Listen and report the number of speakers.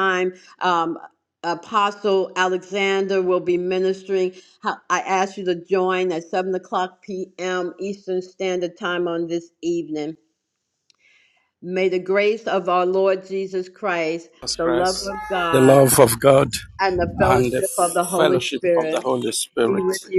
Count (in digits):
2